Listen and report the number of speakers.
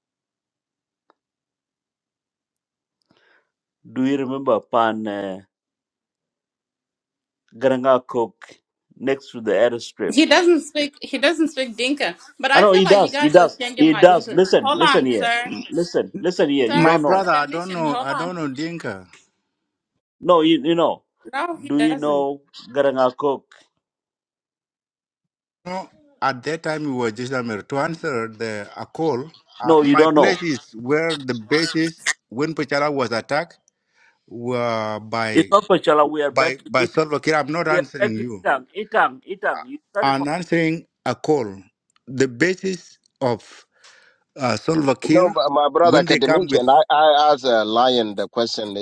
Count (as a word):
four